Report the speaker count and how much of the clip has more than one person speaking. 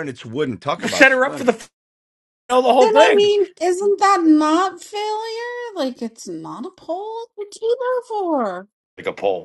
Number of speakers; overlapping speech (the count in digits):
3, about 12%